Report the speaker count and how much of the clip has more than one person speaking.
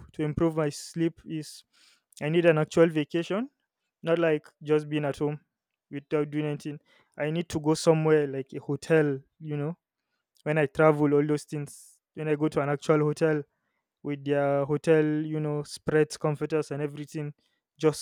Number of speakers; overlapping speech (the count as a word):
one, no overlap